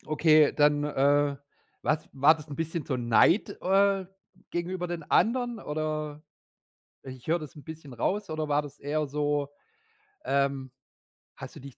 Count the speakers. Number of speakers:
1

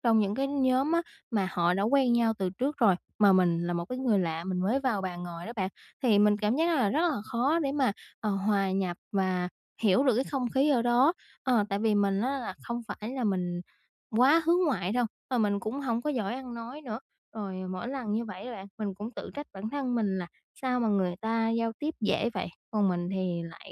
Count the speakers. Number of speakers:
1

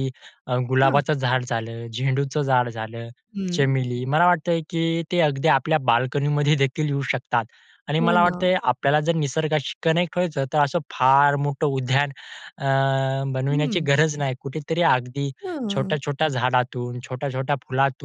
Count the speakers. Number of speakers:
2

